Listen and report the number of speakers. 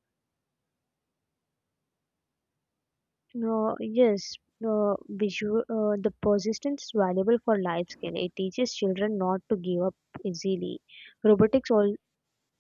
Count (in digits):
1